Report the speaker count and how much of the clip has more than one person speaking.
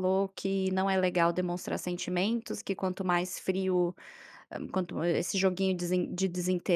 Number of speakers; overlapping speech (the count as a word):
one, no overlap